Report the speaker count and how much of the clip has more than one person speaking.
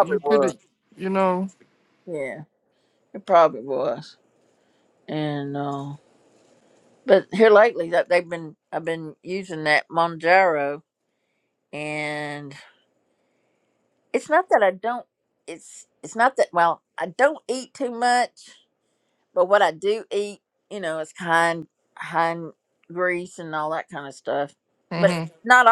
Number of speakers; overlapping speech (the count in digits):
2, about 3%